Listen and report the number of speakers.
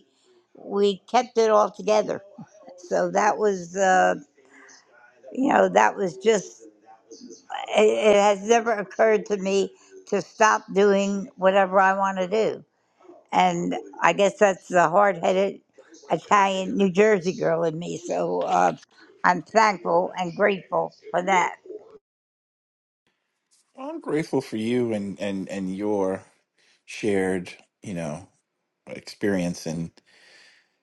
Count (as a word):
two